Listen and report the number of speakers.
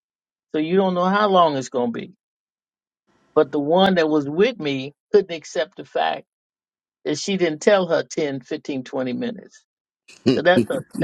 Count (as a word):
one